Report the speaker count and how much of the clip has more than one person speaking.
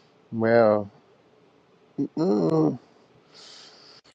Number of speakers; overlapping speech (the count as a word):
one, no overlap